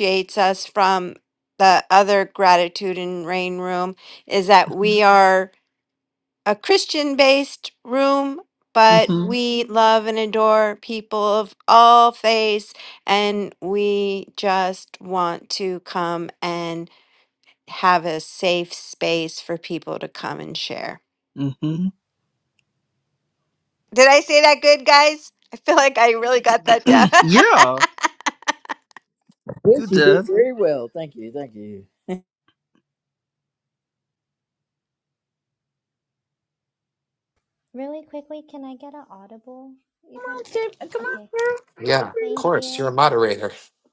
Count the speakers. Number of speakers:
5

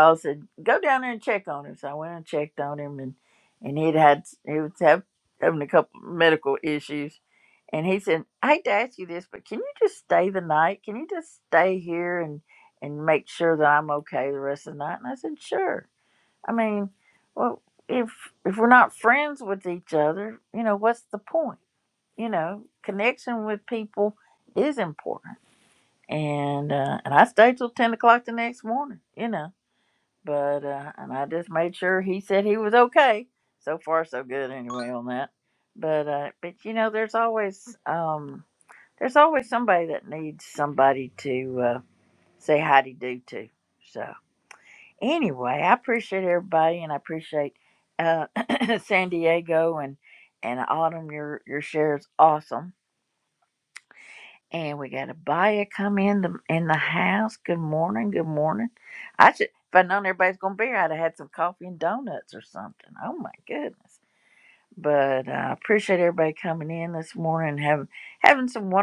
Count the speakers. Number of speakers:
1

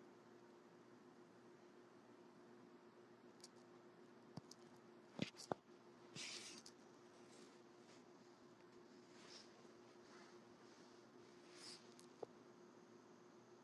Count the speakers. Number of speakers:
0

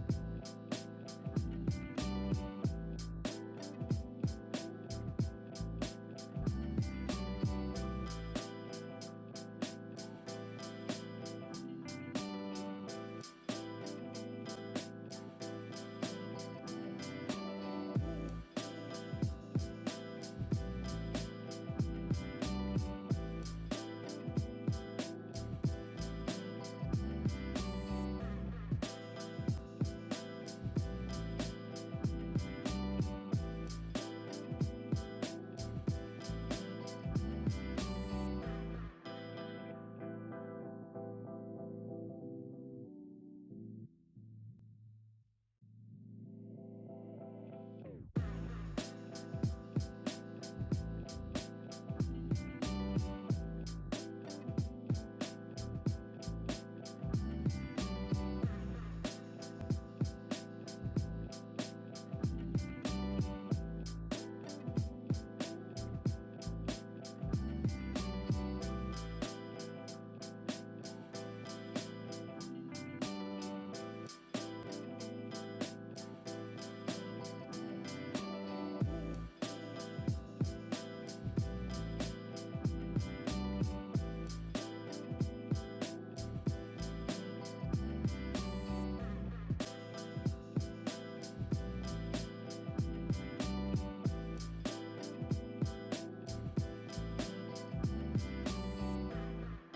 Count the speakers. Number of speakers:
0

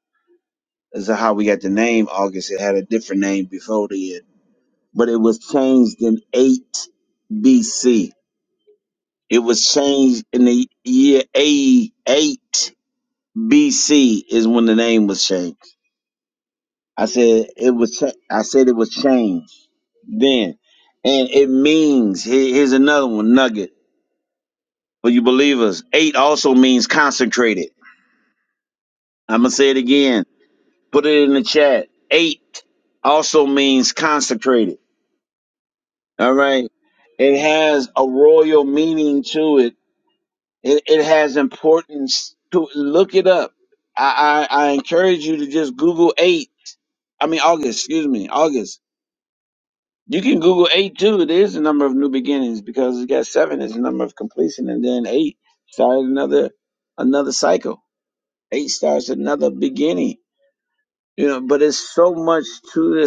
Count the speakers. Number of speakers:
1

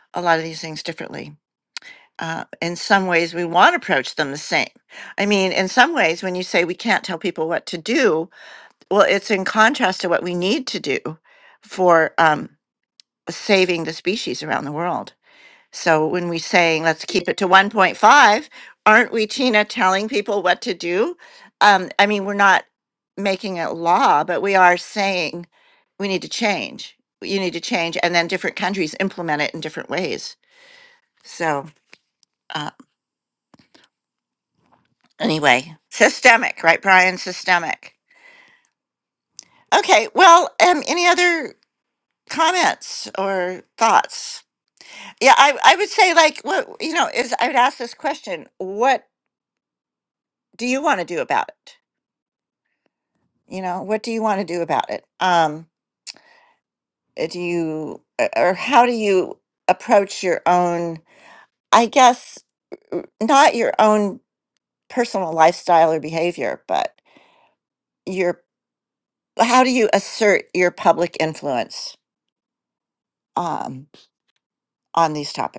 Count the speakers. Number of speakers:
1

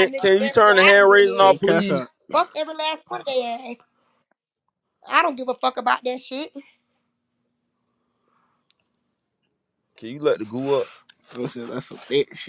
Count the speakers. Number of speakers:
3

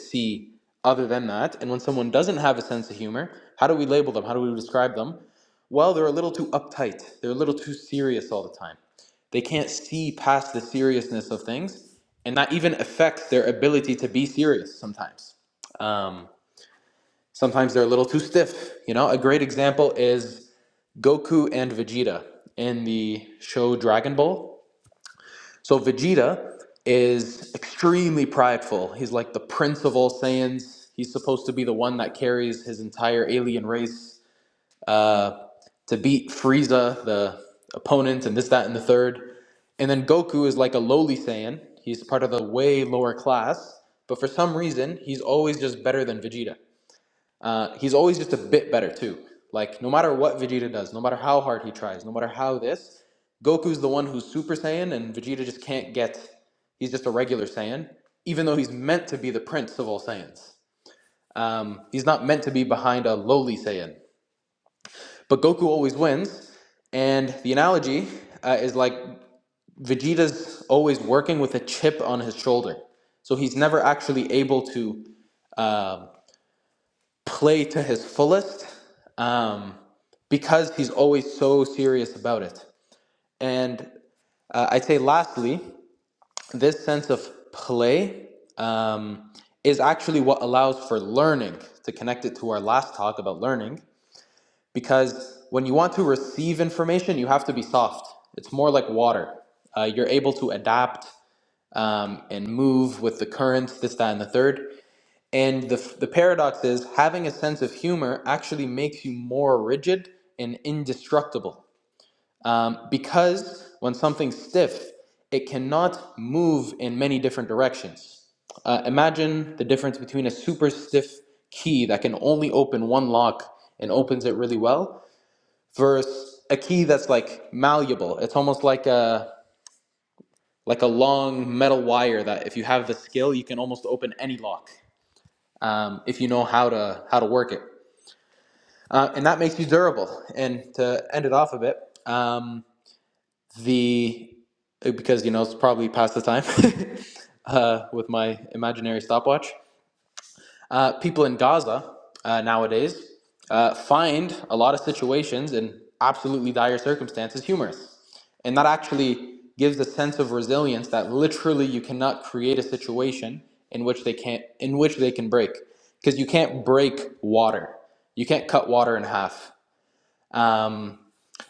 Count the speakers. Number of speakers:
1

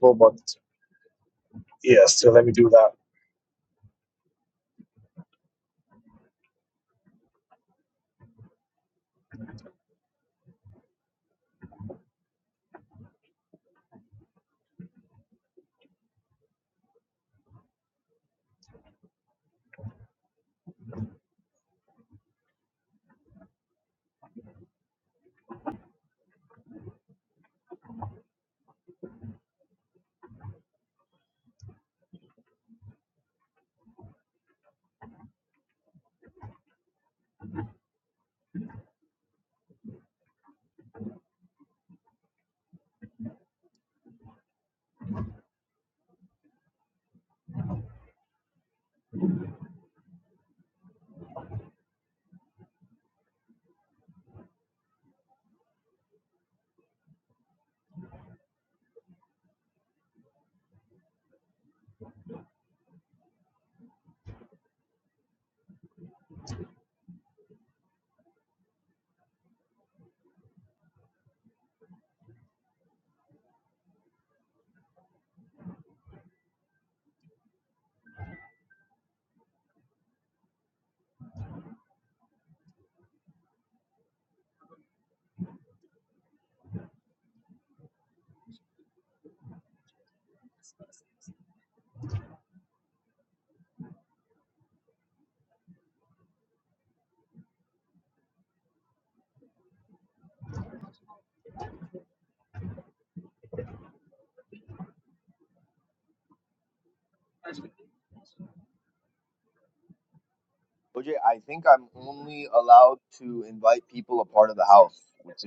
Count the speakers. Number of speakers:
2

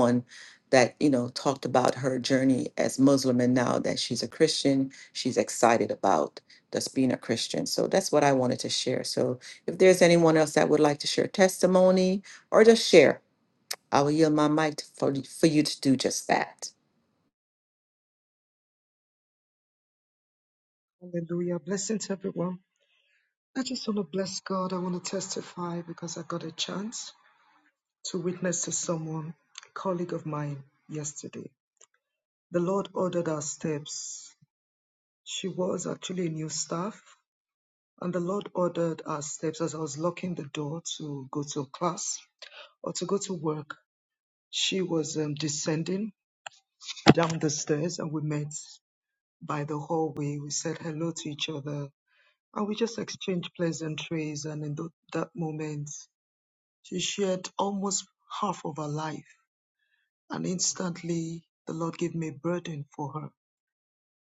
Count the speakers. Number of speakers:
2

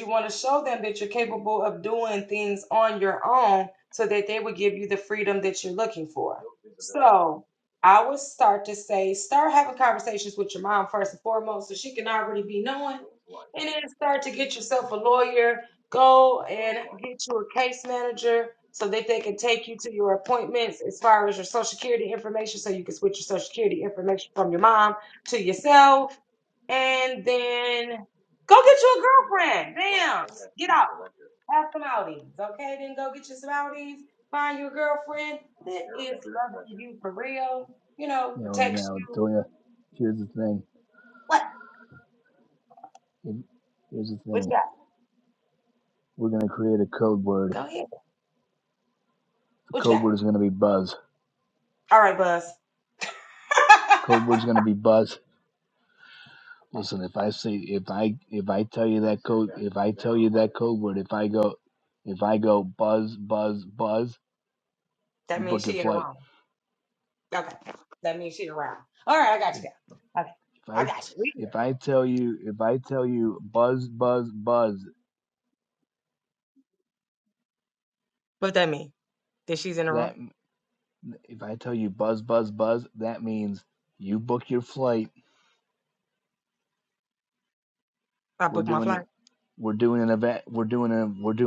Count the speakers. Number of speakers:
2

